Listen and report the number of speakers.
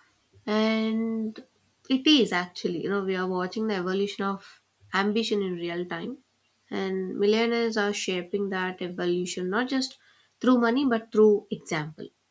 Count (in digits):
1